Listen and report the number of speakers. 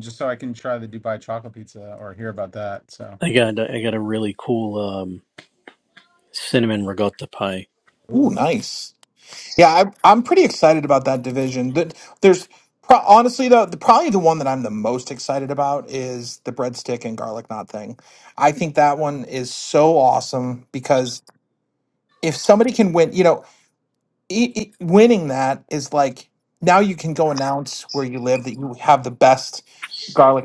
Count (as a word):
three